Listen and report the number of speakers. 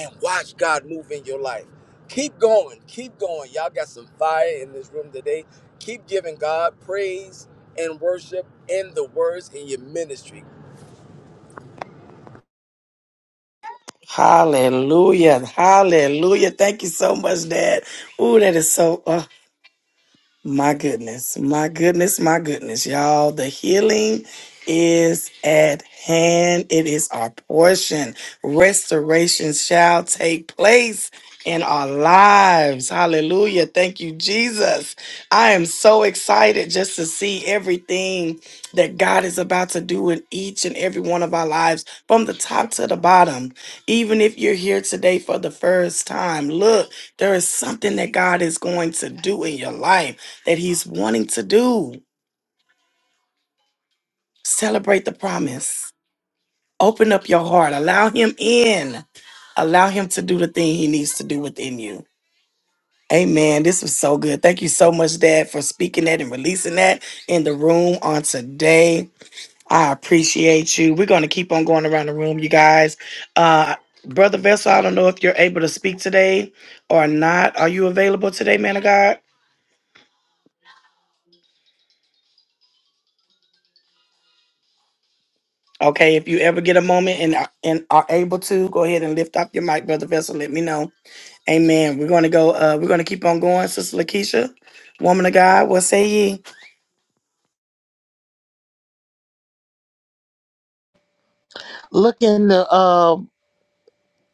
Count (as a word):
three